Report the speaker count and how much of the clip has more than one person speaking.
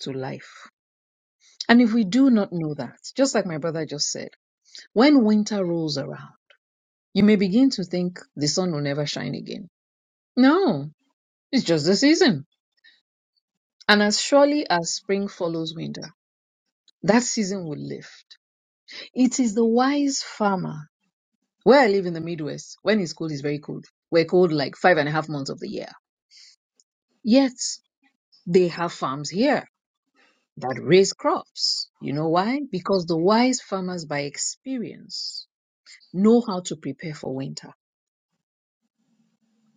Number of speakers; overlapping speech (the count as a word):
one, no overlap